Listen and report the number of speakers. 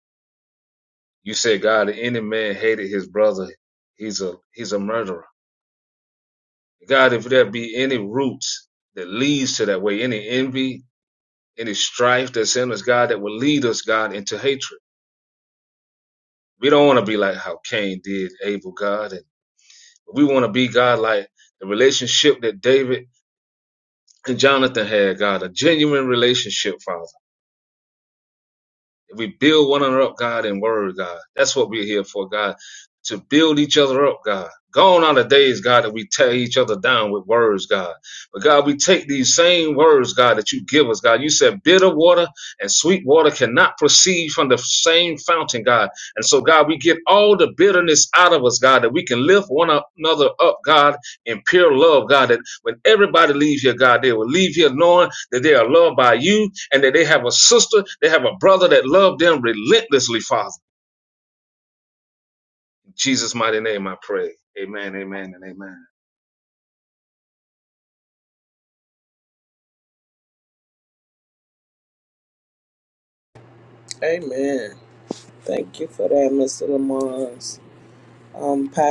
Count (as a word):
two